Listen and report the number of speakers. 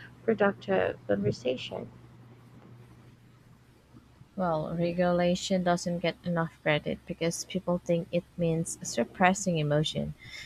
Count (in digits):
2